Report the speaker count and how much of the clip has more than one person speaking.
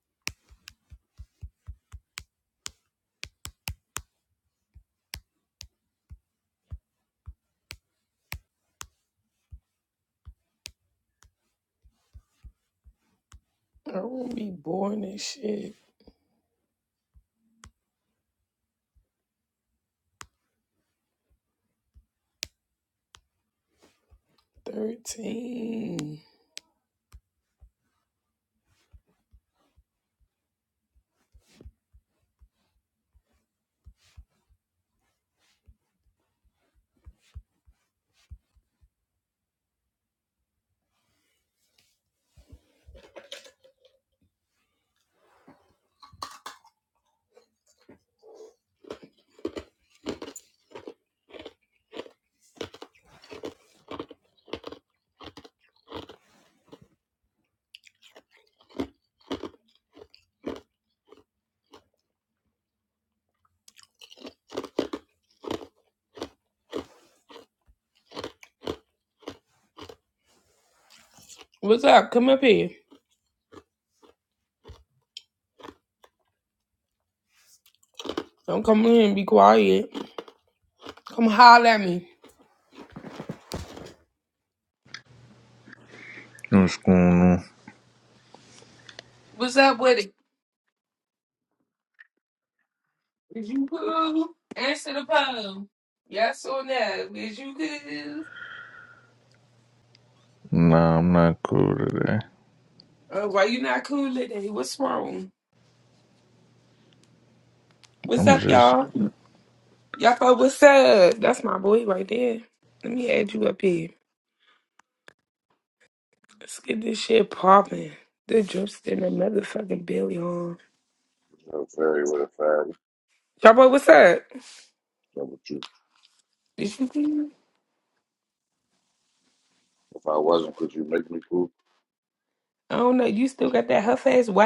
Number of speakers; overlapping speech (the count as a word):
three, under 1%